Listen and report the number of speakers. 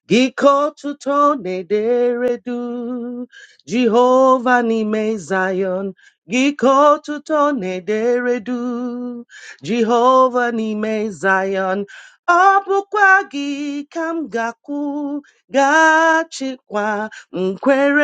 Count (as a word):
one